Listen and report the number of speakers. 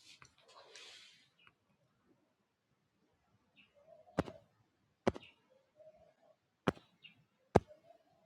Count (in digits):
0